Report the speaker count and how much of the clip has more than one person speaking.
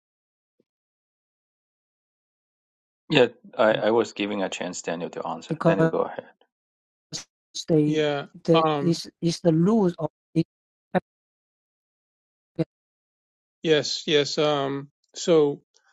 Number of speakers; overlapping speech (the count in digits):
3, about 7%